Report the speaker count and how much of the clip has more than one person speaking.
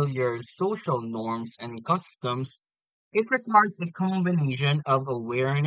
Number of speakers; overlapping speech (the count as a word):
one, no overlap